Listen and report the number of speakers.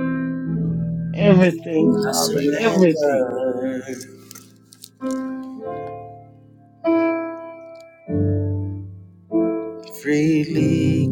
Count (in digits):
2